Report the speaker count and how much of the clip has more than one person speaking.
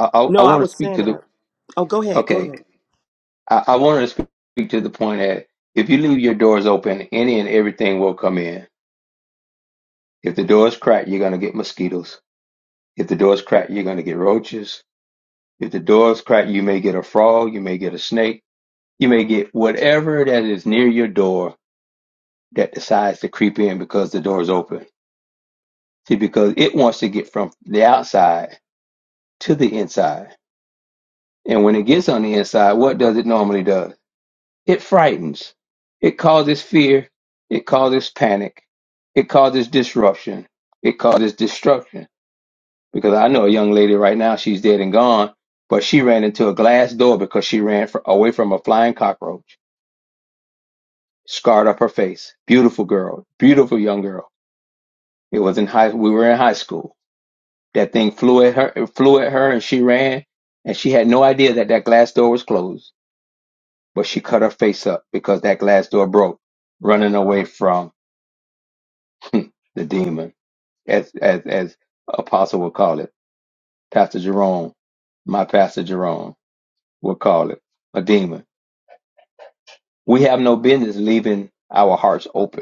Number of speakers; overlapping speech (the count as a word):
two, about 1%